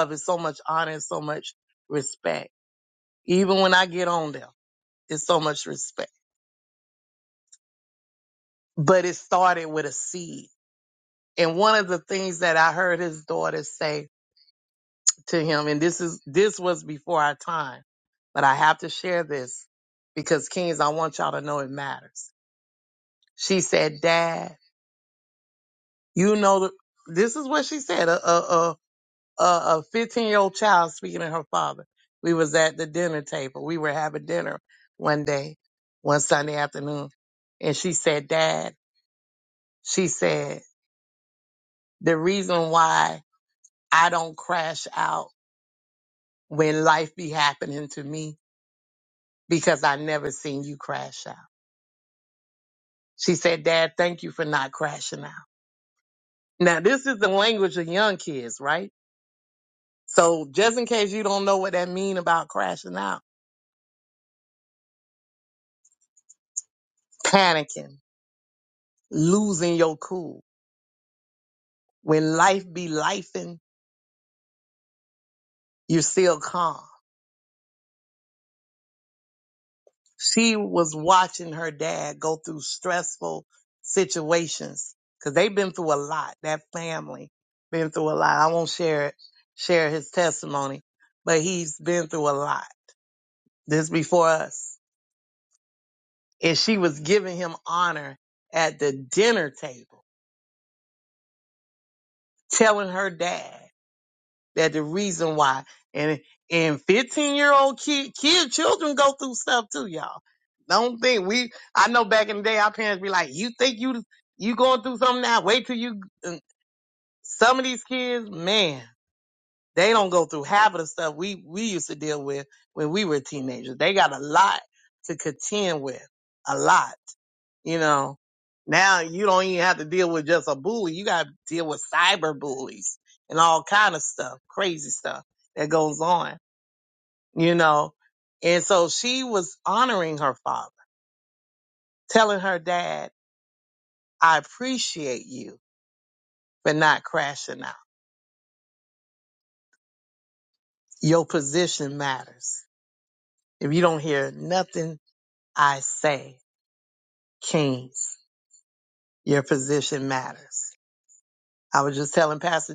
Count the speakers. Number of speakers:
one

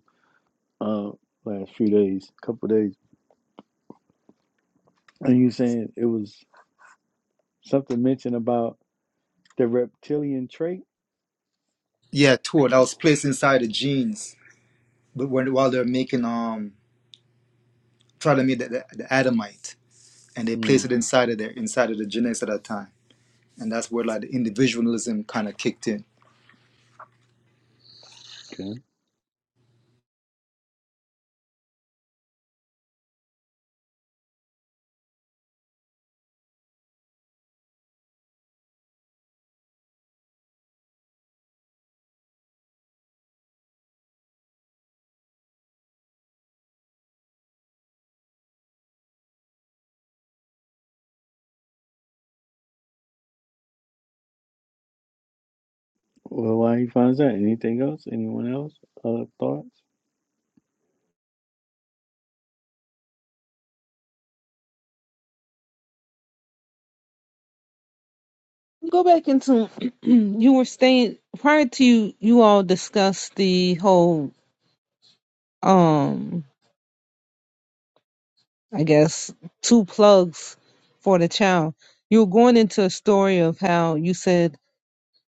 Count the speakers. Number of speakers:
three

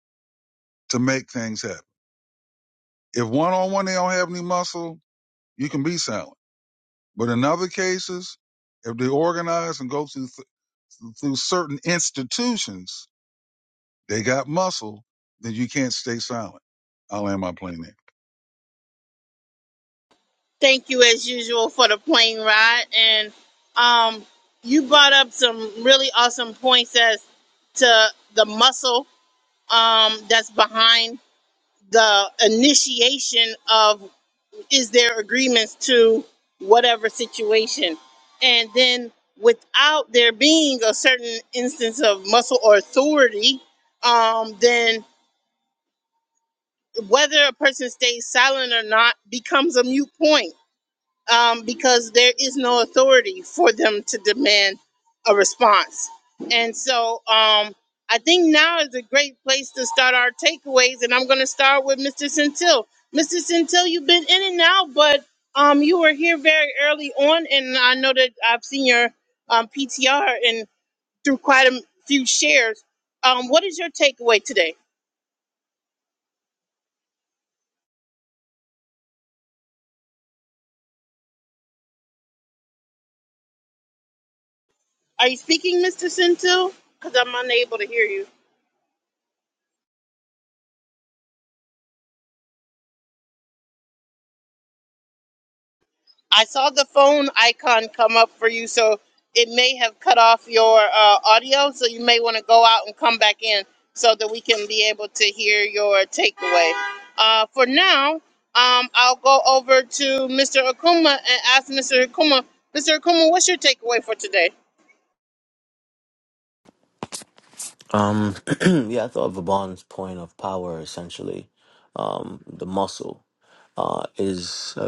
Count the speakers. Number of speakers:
three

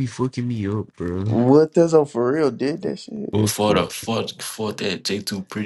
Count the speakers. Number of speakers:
three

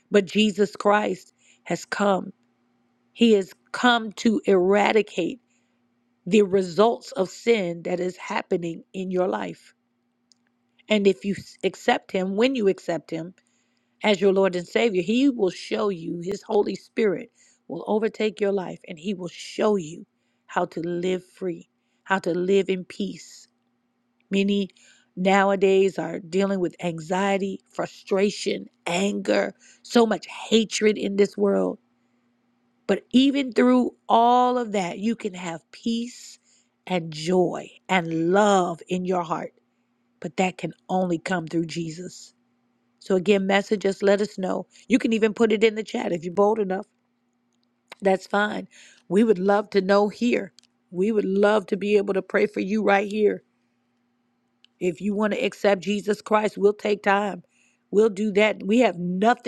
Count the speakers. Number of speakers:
one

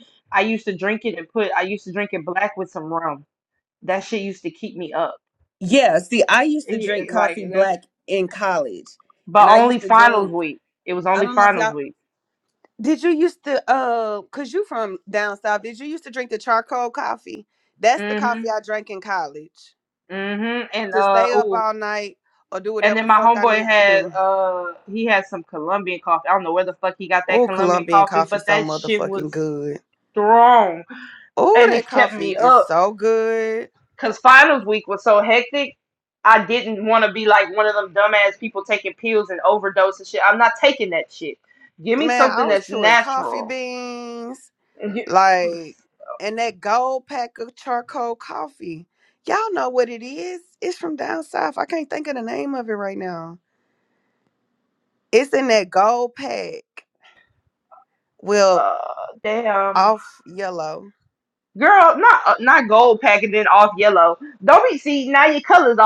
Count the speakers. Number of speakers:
two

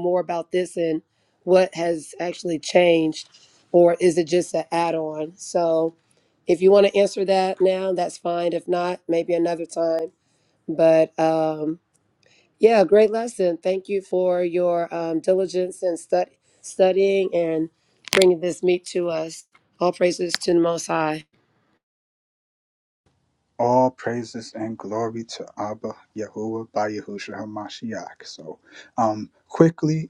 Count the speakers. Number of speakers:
two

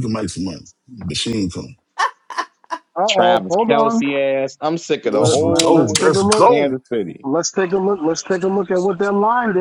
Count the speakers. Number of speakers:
three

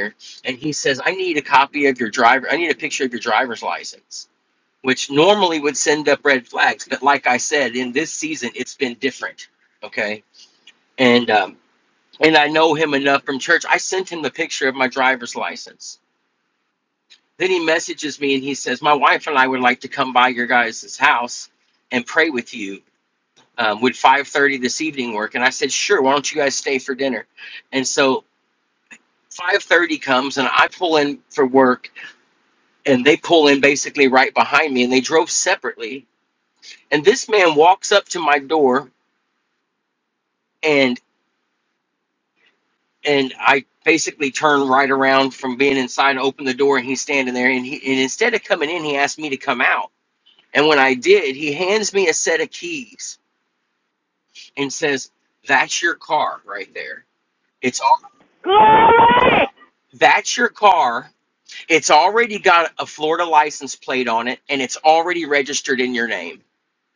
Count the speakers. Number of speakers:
two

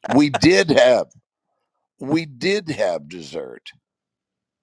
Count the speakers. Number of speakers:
one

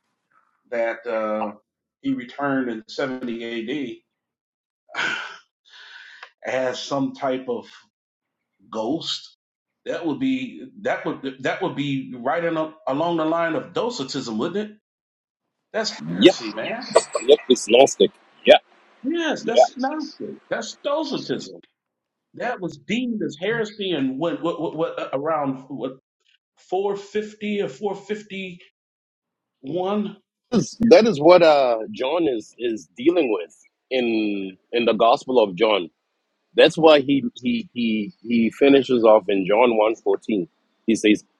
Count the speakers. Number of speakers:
two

